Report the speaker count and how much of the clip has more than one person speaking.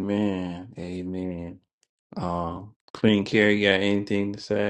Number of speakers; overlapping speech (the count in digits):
1, no overlap